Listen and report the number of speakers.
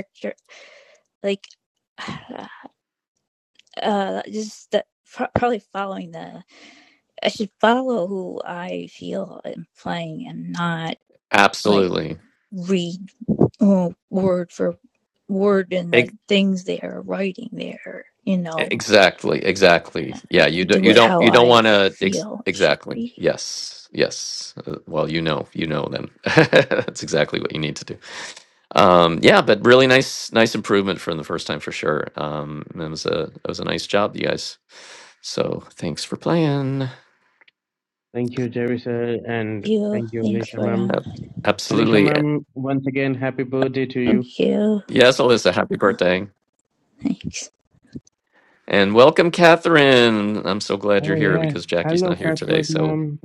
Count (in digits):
3